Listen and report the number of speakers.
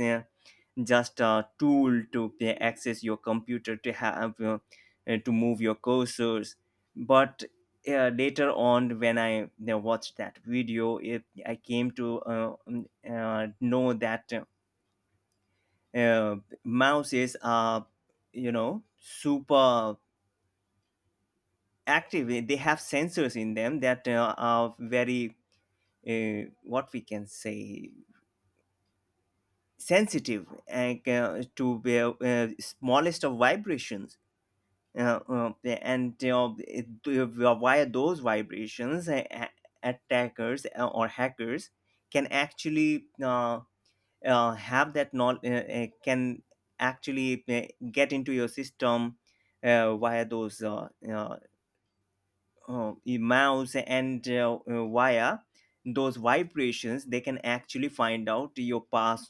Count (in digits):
1